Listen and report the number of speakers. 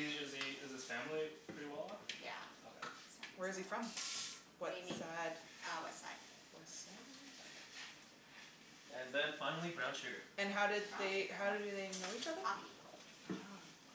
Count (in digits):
4